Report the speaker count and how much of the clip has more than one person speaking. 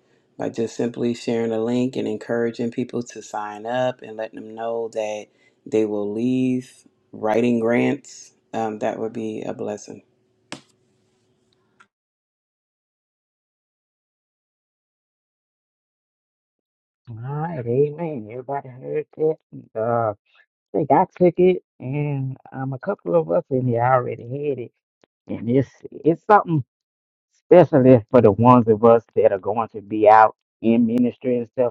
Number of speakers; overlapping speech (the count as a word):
two, no overlap